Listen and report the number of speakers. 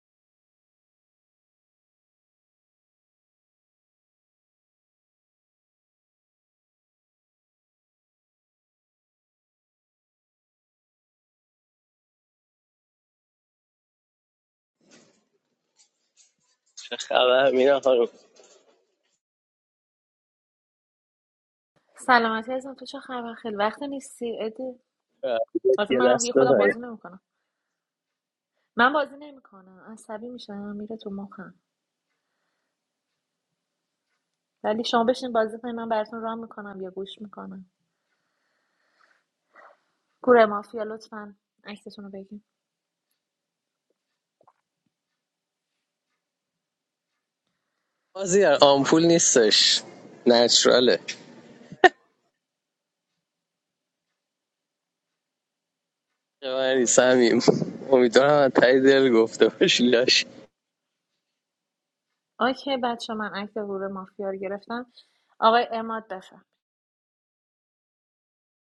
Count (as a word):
two